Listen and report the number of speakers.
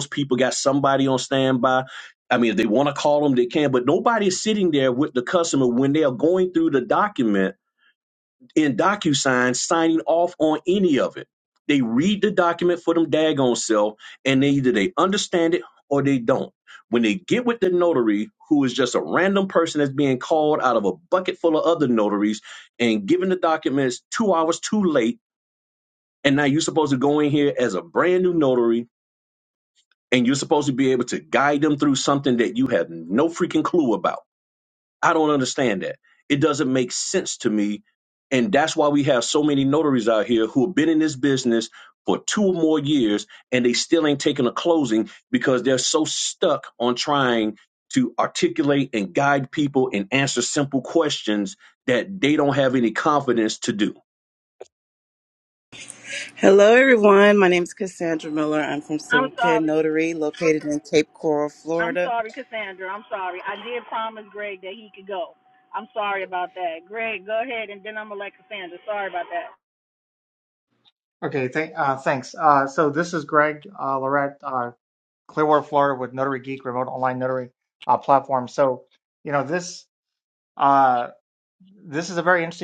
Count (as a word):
four